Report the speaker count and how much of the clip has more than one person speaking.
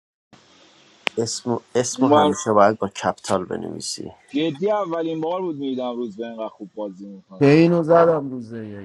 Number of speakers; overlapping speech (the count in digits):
3, about 5%